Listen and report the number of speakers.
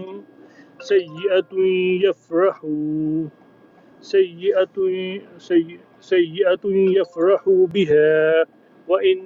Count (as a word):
one